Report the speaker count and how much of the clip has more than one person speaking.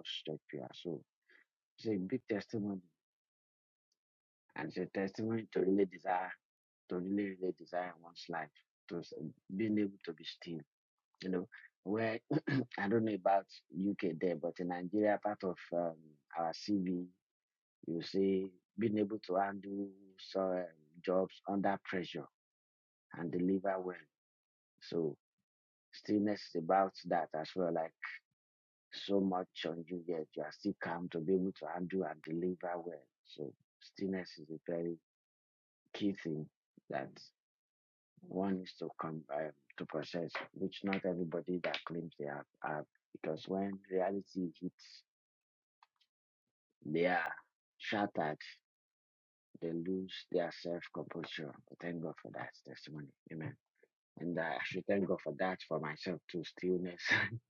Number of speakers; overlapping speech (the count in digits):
1, no overlap